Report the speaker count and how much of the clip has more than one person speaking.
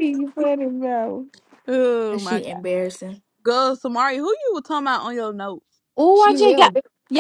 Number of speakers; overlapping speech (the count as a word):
three, about 15%